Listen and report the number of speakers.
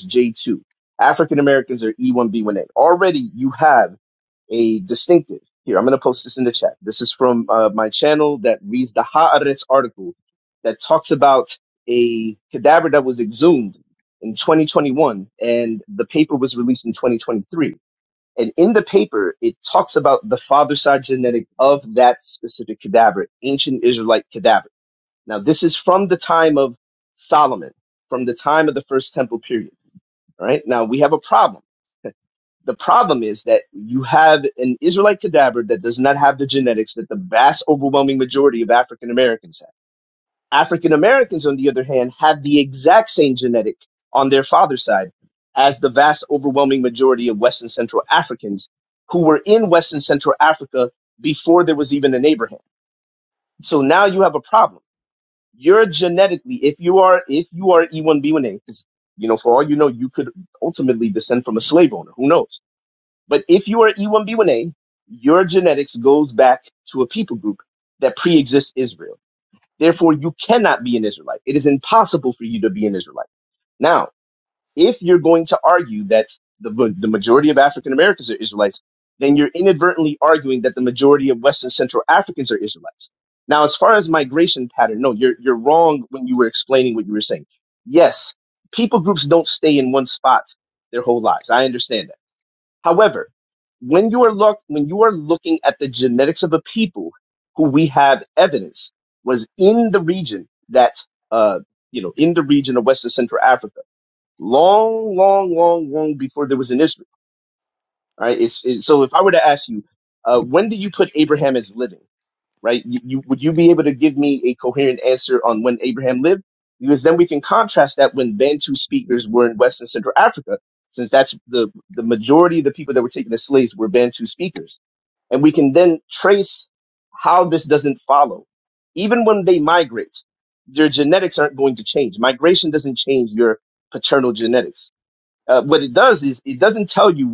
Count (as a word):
one